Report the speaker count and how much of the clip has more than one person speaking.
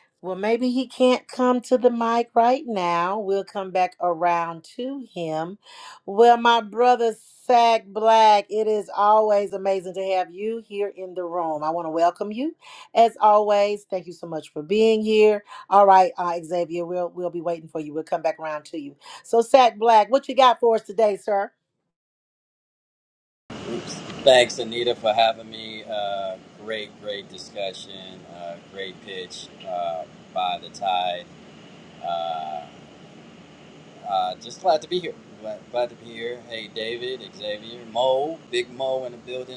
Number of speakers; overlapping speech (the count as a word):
two, no overlap